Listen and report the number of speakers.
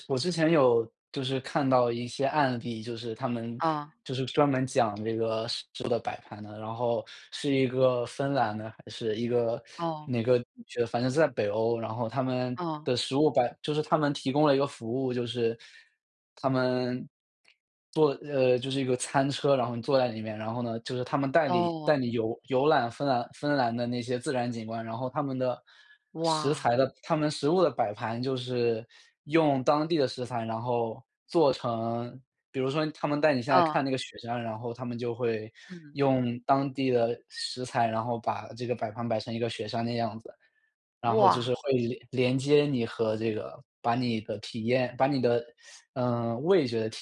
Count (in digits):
2